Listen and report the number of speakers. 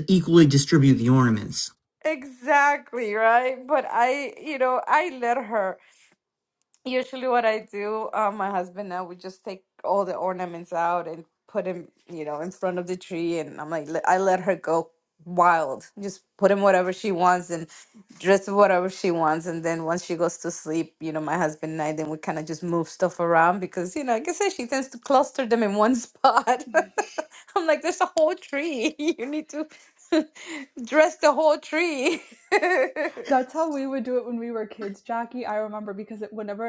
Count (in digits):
3